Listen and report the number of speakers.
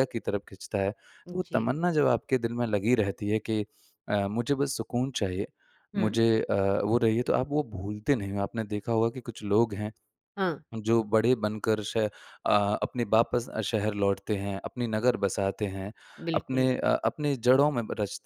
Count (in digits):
2